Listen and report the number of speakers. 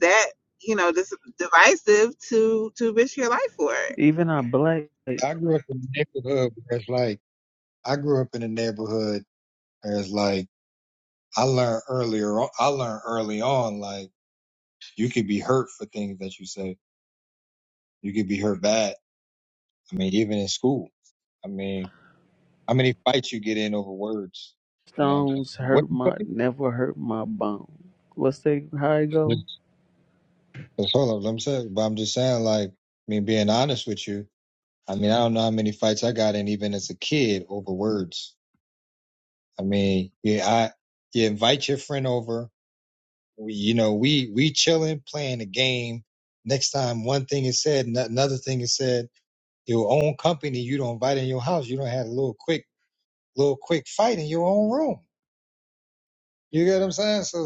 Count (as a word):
three